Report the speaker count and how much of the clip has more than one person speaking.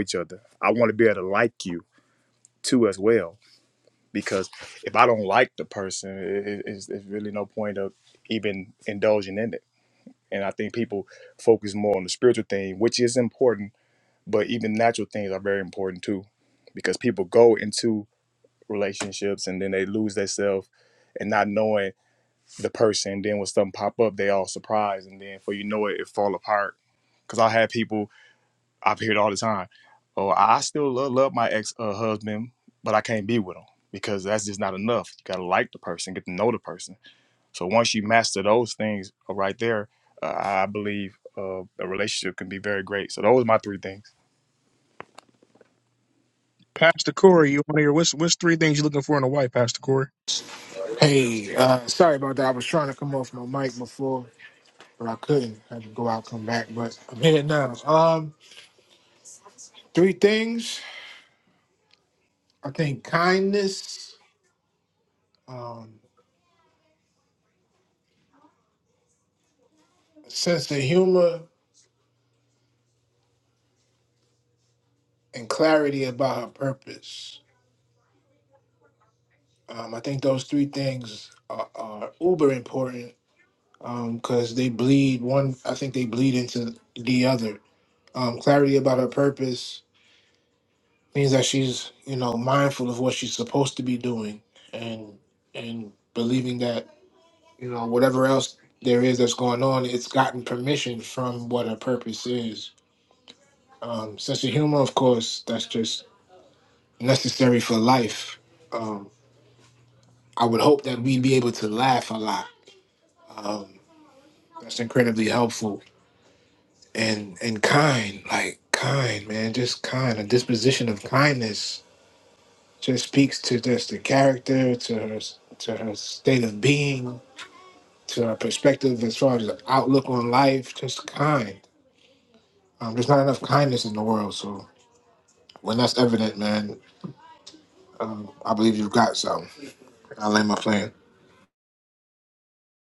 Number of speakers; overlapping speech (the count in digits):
3, no overlap